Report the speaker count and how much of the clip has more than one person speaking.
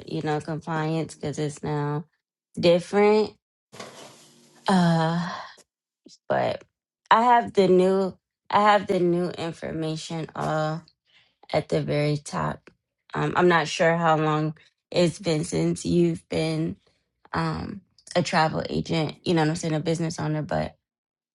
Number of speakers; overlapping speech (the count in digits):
1, no overlap